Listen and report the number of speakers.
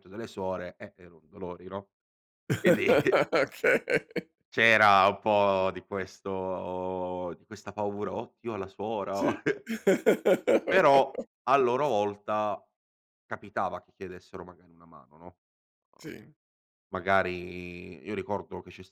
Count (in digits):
2